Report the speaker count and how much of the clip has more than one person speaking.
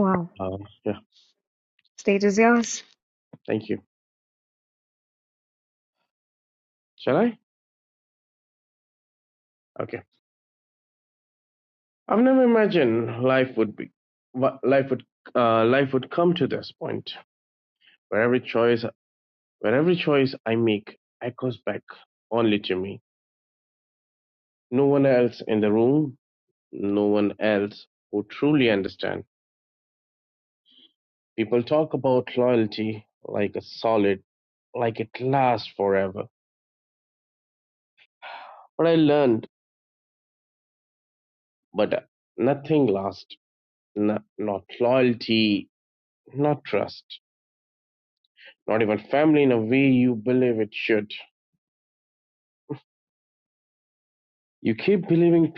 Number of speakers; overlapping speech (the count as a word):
two, no overlap